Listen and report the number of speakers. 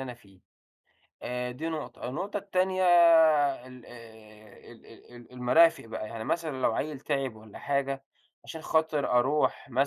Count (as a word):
one